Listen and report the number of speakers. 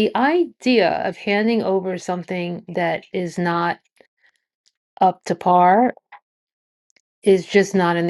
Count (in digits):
1